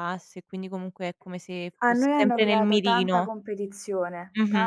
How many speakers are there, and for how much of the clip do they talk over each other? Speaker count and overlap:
2, about 38%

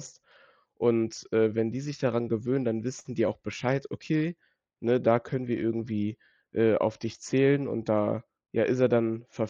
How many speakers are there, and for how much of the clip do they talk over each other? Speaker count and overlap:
1, no overlap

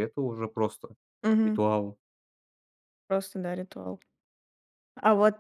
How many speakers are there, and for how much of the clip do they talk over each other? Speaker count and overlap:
2, about 3%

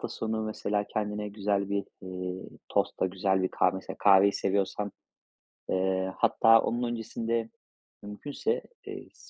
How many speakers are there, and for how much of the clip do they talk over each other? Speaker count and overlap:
1, no overlap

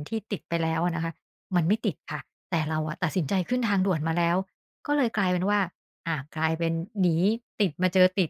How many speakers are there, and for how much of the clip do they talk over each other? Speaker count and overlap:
1, no overlap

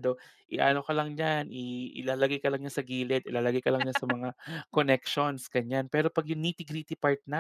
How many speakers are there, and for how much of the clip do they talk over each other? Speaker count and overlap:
1, no overlap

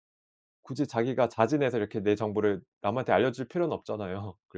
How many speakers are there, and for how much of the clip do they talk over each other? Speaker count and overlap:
1, no overlap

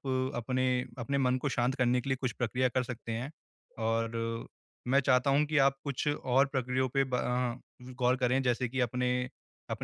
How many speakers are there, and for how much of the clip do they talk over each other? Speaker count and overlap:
1, no overlap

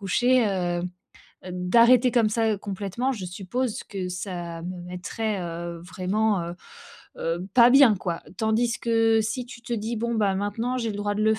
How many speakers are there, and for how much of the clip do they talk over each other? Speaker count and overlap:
1, no overlap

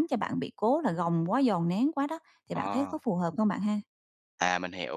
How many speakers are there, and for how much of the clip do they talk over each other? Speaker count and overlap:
2, about 8%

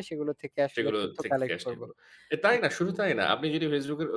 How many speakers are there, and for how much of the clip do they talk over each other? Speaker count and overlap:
2, about 28%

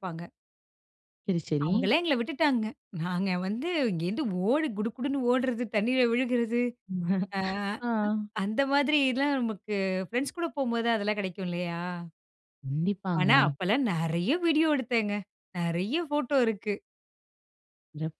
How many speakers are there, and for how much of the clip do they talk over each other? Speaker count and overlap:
2, about 3%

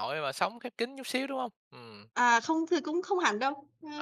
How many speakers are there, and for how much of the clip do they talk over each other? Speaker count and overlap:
2, no overlap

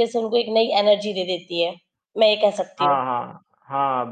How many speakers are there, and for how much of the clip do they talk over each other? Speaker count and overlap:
2, about 4%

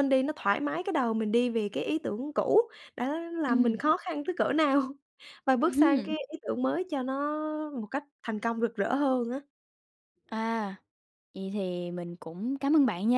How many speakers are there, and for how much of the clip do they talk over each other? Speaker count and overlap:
2, about 6%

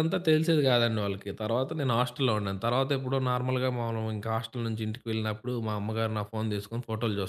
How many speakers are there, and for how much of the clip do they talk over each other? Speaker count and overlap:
1, no overlap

